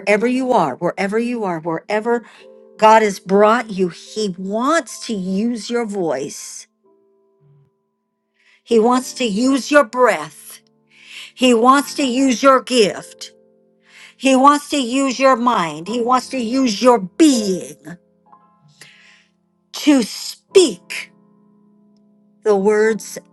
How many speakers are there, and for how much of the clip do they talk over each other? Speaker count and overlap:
1, no overlap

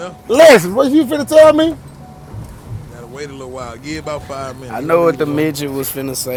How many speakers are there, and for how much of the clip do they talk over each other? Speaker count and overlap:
3, about 12%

